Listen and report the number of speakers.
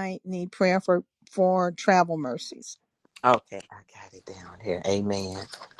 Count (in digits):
2